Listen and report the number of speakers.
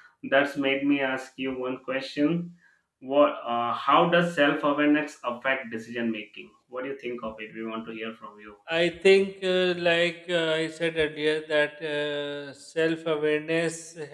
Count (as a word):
two